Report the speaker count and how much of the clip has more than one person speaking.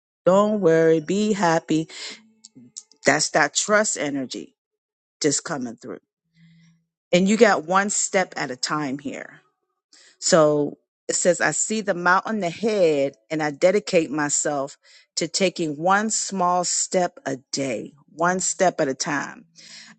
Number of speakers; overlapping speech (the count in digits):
1, no overlap